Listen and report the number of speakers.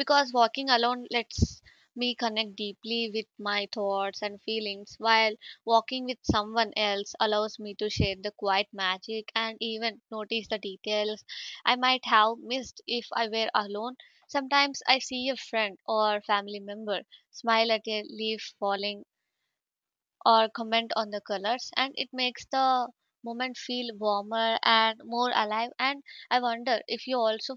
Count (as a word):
one